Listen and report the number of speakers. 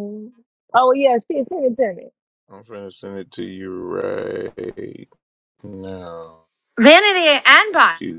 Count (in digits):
3